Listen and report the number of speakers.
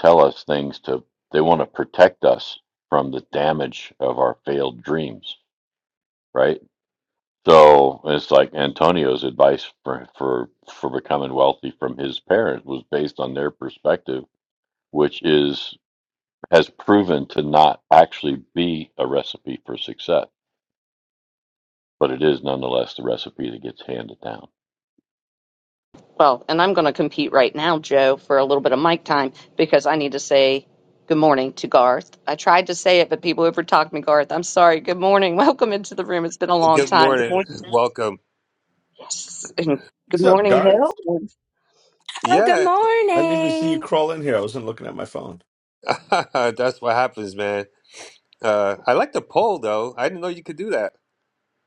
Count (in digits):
5